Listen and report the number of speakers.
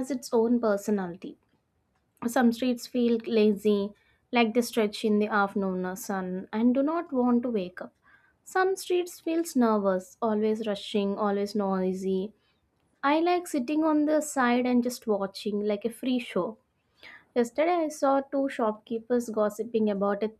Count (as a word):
one